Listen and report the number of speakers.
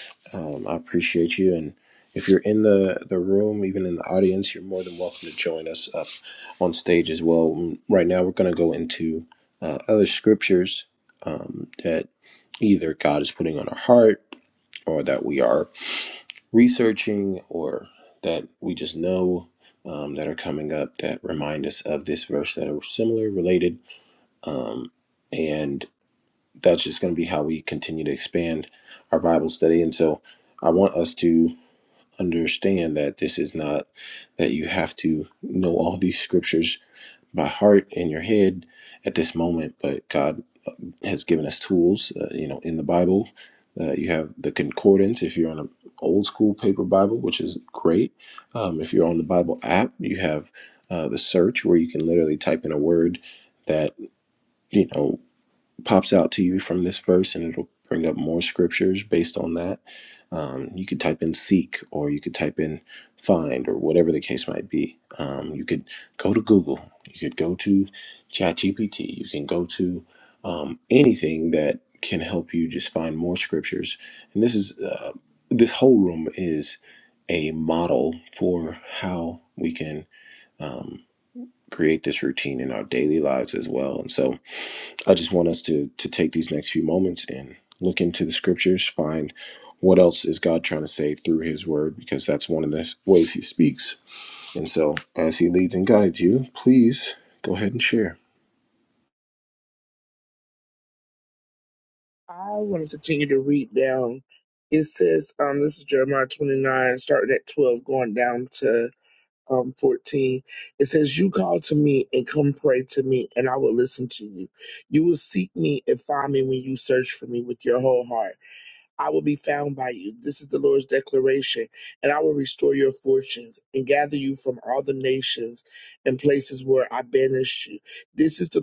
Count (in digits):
2